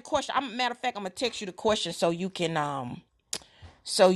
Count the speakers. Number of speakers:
1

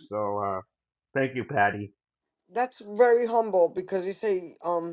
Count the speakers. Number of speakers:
2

